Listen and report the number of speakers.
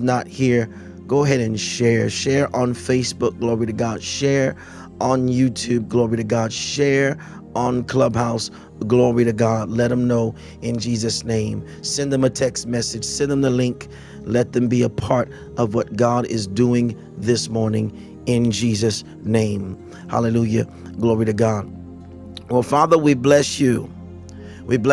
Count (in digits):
1